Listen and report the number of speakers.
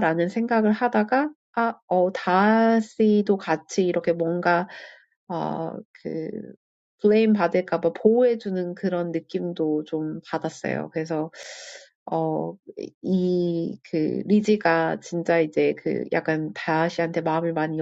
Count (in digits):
1